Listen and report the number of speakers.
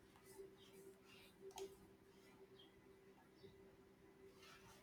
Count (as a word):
zero